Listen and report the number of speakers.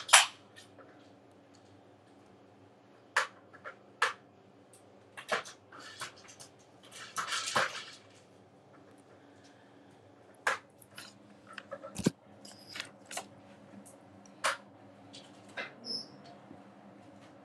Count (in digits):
0